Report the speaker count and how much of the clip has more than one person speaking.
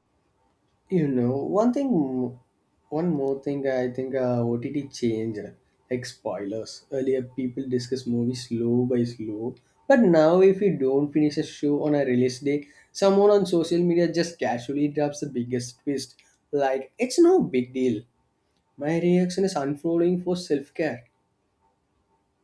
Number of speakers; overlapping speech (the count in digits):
1, no overlap